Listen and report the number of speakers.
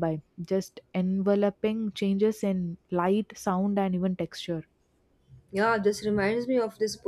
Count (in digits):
2